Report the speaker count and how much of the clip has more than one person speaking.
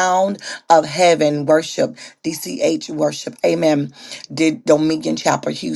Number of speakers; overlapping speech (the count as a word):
one, no overlap